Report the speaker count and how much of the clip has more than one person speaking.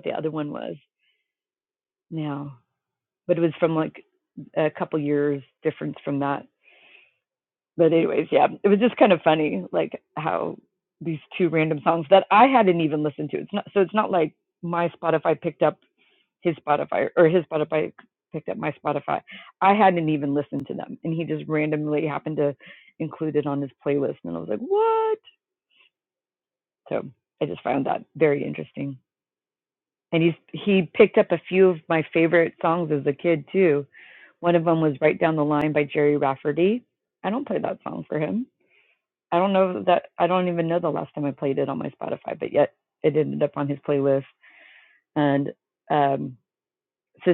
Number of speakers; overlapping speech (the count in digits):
1, no overlap